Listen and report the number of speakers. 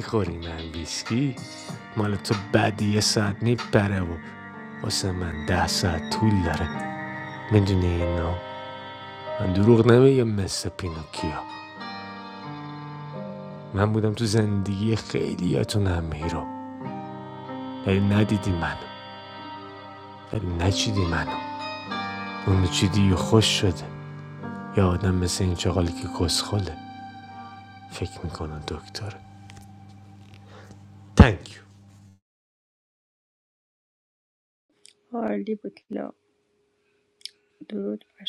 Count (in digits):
2